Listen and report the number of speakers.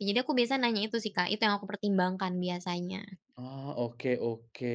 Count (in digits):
2